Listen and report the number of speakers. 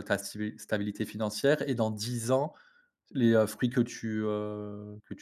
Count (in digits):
1